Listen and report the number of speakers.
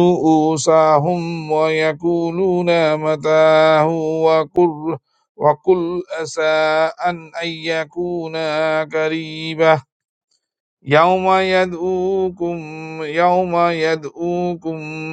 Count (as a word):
one